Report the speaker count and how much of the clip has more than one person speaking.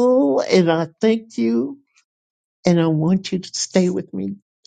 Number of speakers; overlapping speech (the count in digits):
1, no overlap